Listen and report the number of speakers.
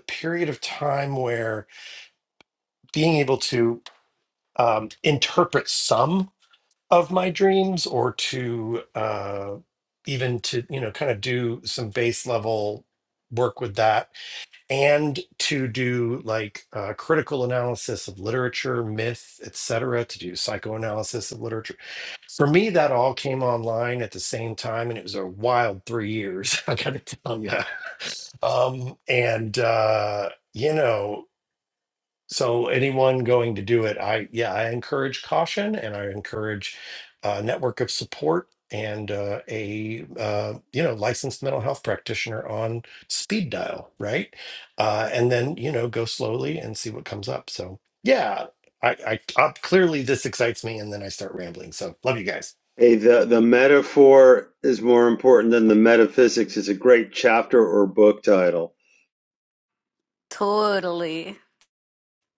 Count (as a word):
three